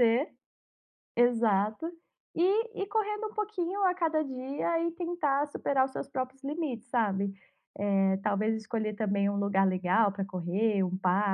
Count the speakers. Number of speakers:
one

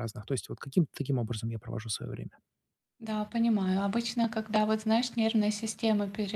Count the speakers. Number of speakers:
two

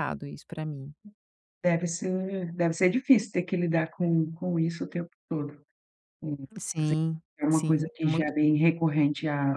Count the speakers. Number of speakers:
two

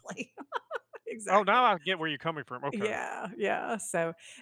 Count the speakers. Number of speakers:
two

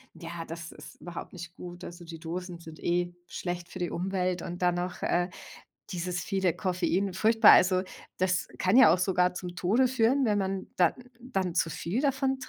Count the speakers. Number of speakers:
one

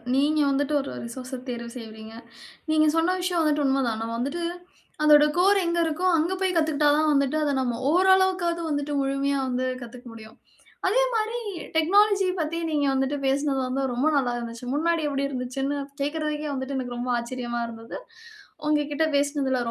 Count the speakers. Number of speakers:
one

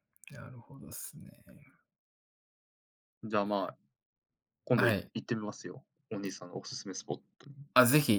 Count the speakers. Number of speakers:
two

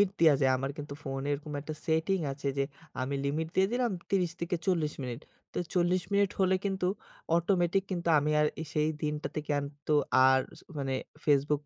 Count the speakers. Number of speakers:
one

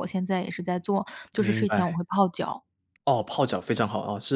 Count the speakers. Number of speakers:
two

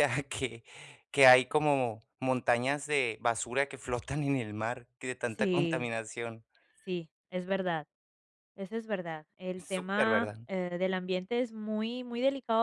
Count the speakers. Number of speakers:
two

